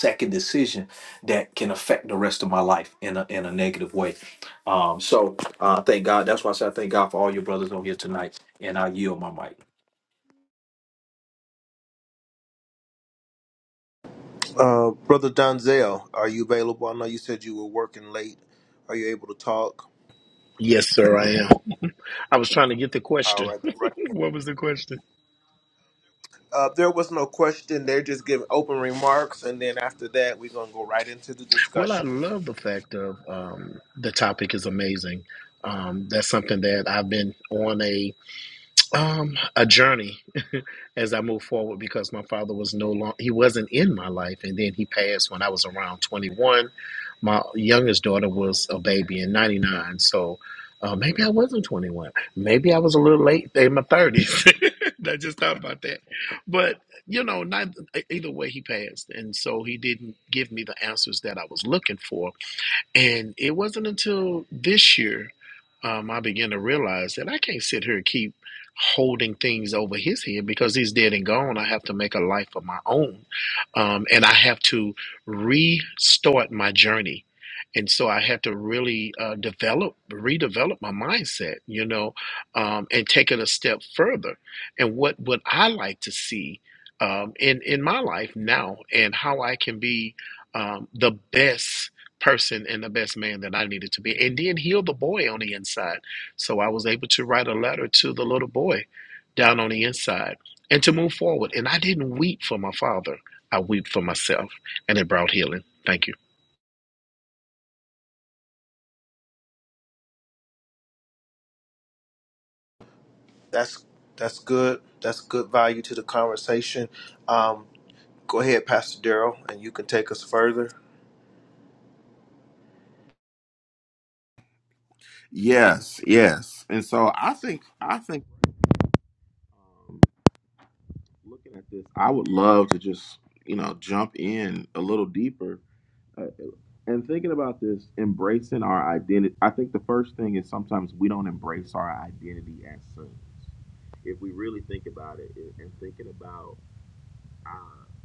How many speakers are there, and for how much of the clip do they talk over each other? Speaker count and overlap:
4, under 1%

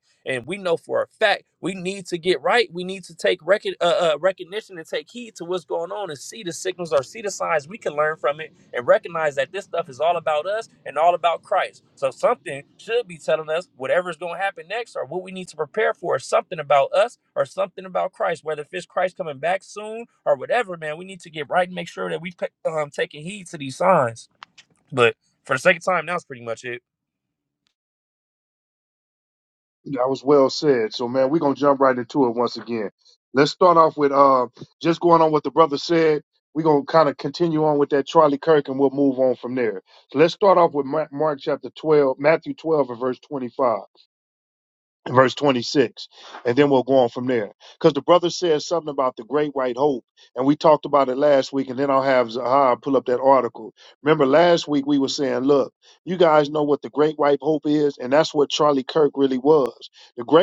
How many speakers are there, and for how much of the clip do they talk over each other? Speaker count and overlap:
2, no overlap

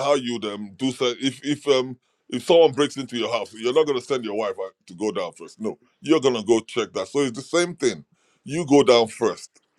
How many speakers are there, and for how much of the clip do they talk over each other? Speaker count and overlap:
1, no overlap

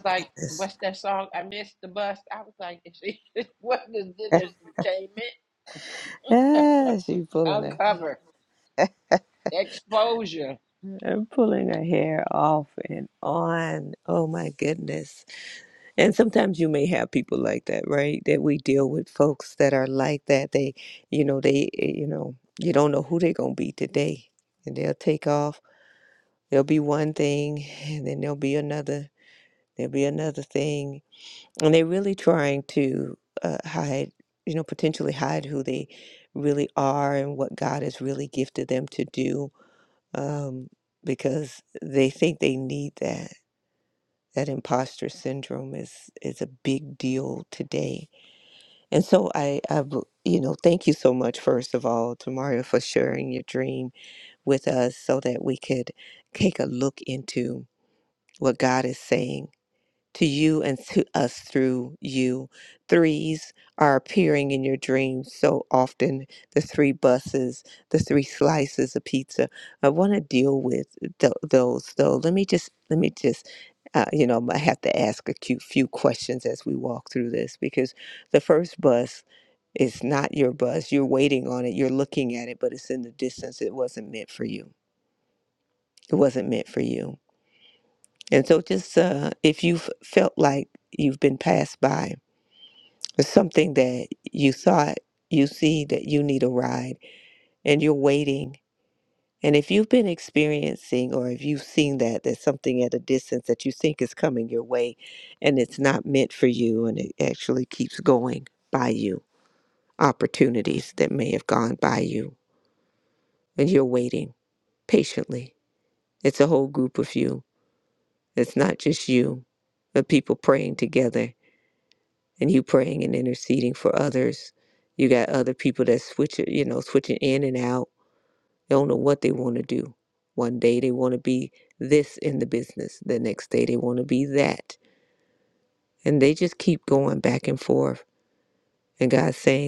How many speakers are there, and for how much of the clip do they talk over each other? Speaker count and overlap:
2, about 1%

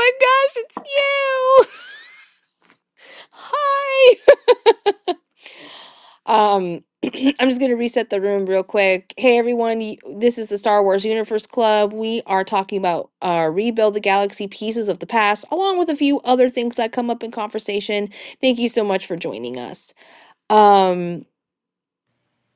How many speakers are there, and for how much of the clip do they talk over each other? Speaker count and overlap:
1, no overlap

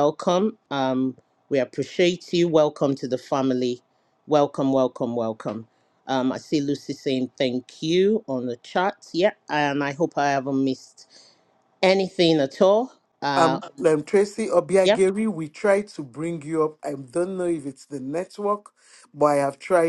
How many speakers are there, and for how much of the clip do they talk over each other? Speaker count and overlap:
2, about 2%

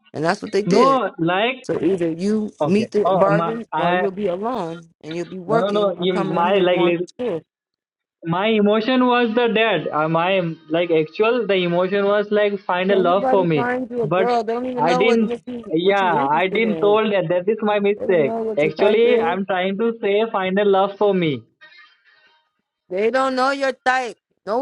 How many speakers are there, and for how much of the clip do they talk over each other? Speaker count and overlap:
2, about 31%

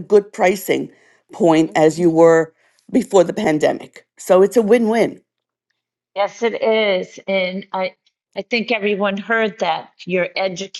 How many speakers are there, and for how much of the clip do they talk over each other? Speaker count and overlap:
2, about 1%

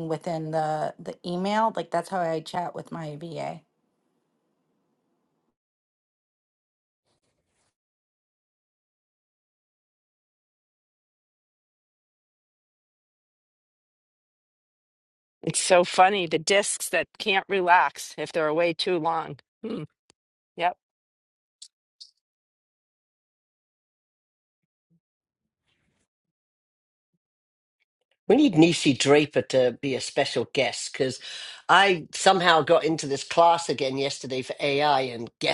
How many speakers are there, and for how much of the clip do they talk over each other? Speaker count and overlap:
3, no overlap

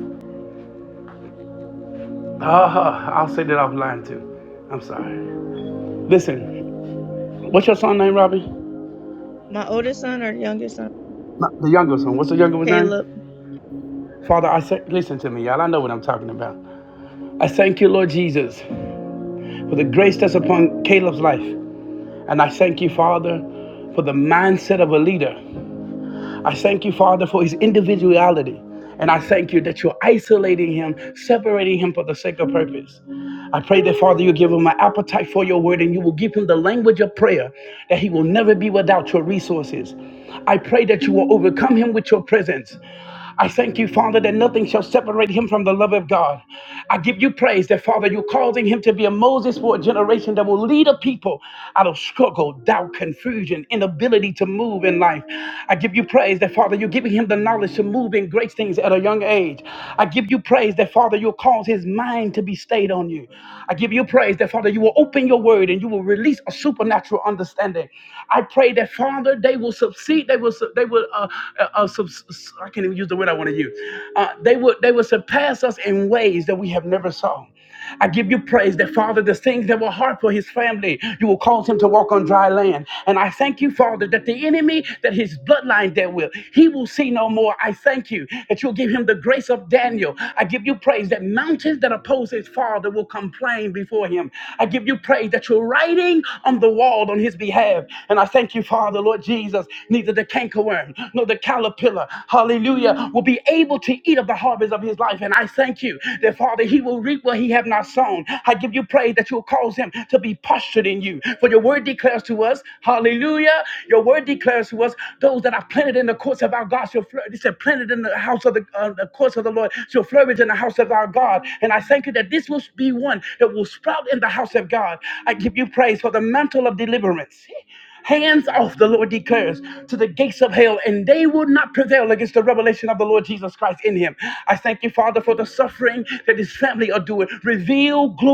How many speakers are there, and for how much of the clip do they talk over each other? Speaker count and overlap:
2, under 1%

